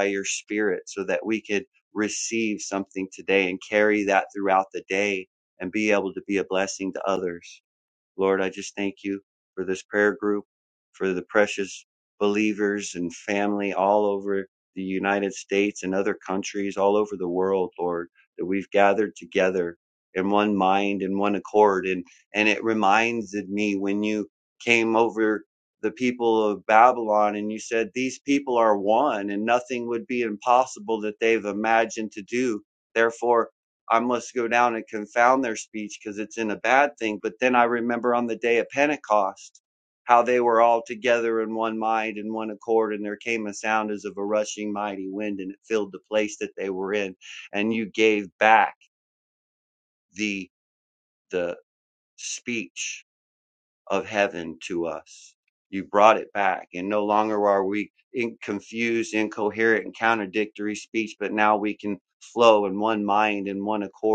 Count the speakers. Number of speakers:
1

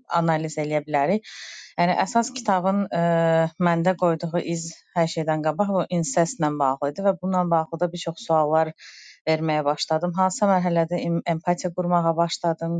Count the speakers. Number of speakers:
1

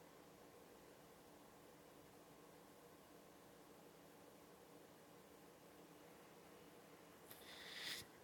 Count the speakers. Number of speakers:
0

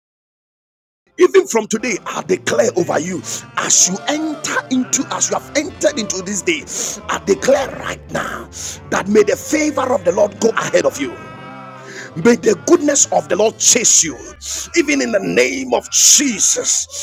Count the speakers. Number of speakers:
1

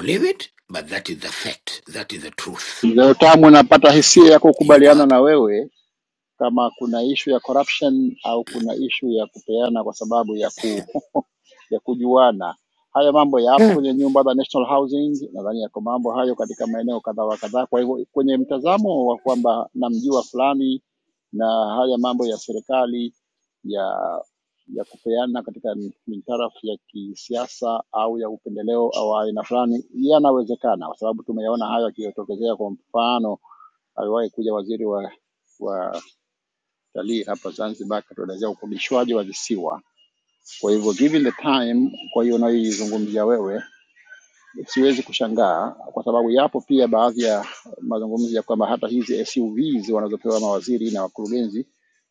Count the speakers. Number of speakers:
2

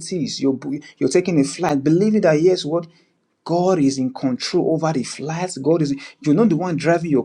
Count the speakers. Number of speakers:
1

